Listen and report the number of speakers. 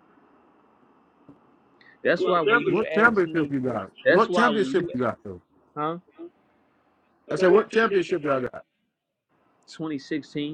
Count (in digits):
2